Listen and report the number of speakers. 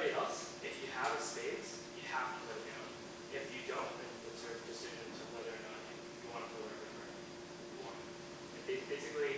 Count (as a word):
one